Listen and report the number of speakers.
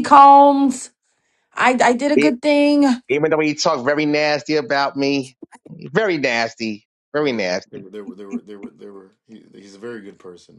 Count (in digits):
3